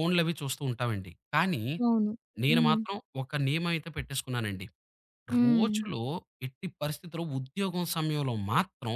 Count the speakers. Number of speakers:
two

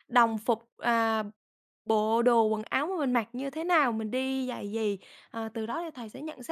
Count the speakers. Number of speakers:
one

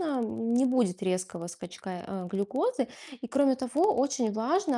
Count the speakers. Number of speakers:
one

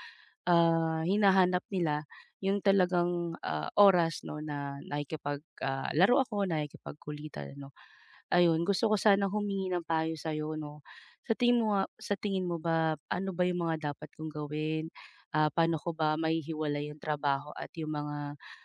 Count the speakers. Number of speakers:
one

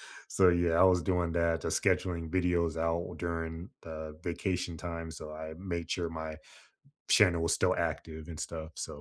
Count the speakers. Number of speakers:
one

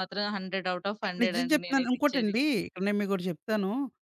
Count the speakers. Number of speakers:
two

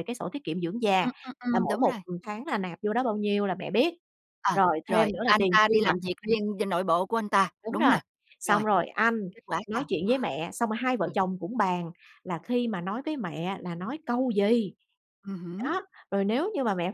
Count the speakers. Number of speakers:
two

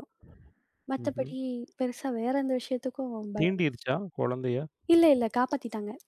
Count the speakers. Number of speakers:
two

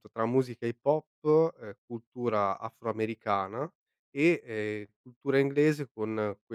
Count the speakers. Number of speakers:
one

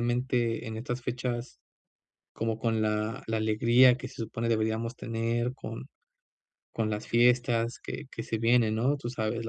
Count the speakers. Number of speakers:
one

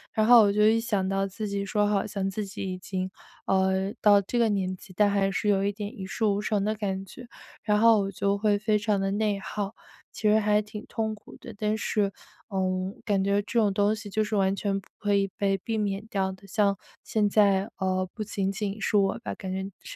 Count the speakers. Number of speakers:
one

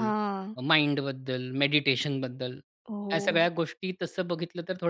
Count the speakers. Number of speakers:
two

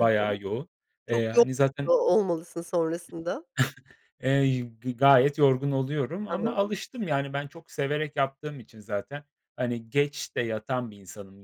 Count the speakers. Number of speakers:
two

